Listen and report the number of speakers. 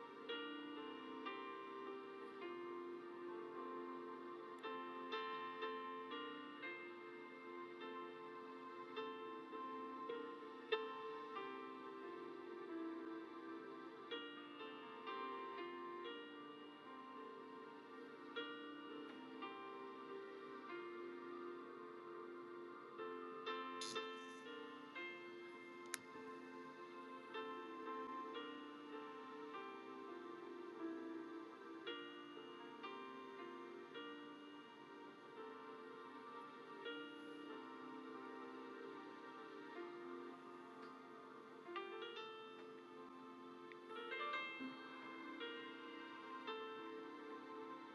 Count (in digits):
0